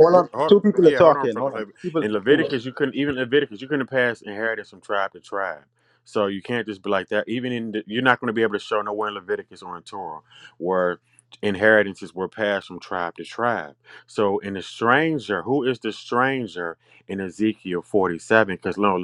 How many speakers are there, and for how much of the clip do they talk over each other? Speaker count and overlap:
two, about 12%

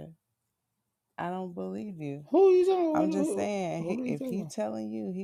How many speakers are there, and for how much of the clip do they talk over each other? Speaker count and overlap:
two, about 29%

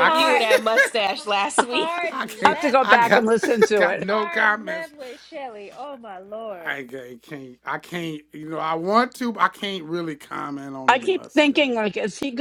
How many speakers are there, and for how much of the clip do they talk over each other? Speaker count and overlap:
four, about 34%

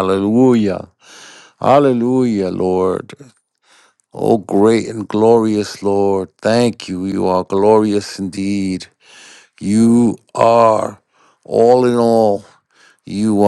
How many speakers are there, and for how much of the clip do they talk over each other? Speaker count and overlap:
one, no overlap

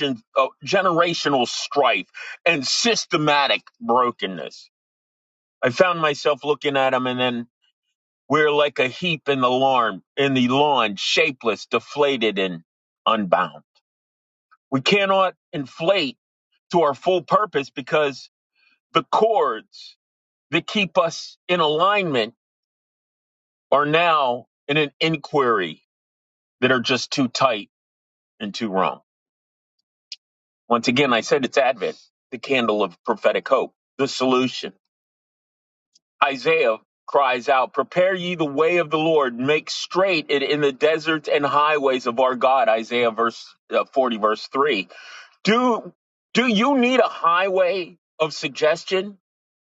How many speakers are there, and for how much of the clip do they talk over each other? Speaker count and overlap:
one, no overlap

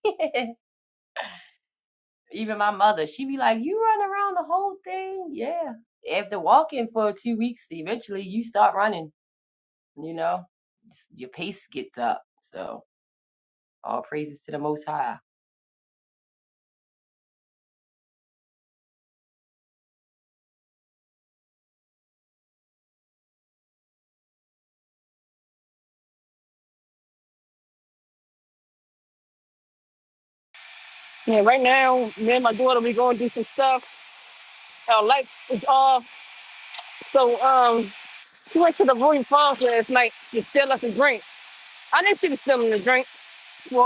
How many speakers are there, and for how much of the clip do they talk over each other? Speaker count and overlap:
two, no overlap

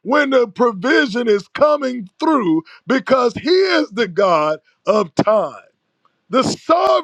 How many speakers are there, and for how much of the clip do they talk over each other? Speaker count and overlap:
one, no overlap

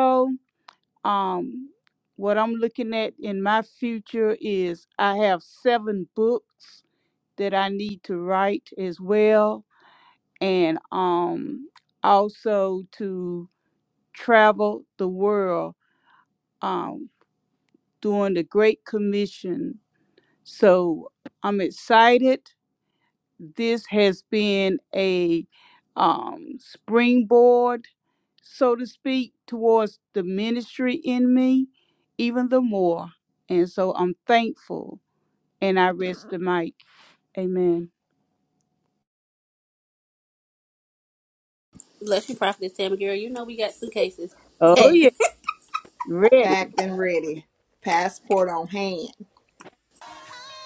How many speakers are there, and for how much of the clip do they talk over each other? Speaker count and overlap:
three, about 1%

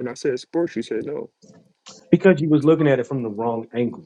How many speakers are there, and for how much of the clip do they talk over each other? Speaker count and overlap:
two, no overlap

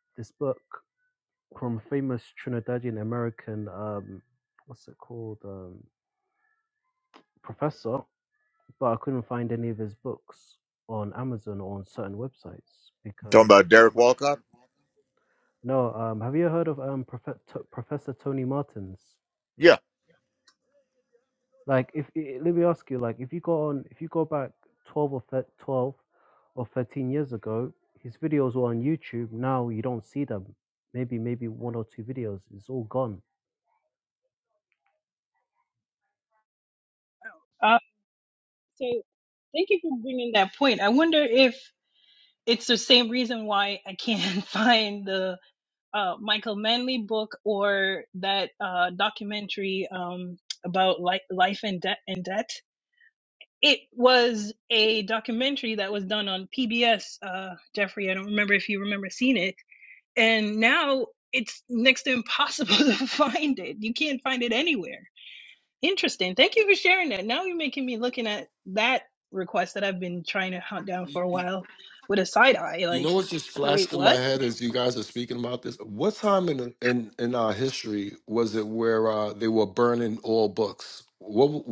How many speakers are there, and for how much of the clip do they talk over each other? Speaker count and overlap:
four, about 1%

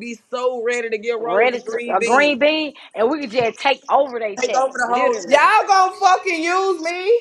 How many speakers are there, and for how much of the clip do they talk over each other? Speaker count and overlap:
three, about 32%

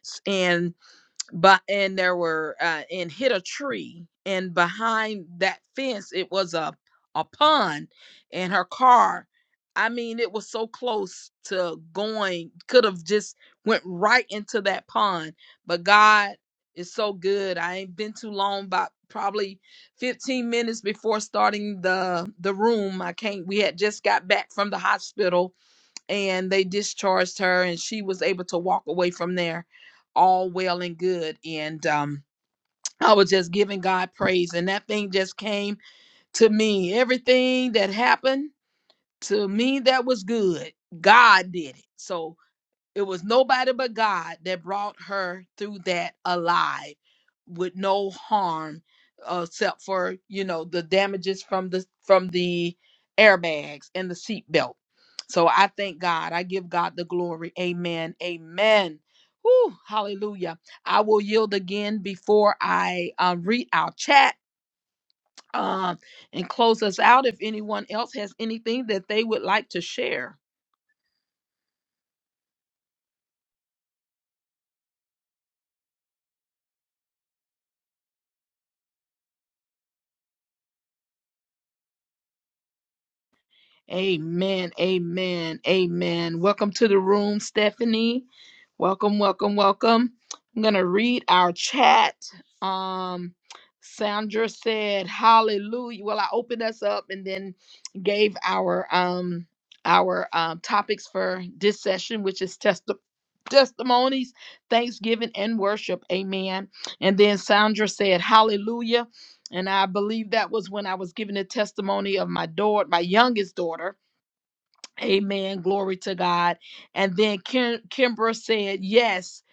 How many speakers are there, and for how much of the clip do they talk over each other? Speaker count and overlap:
one, no overlap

